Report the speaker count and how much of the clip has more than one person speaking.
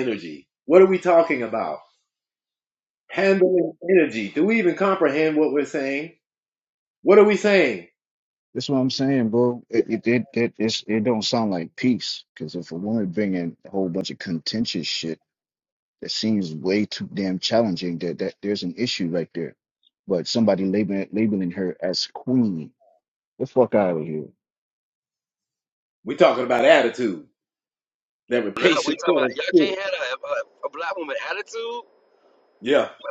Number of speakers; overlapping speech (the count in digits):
3, about 4%